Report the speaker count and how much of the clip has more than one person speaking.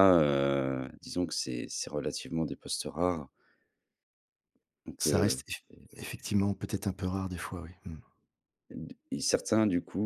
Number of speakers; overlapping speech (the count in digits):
2, about 4%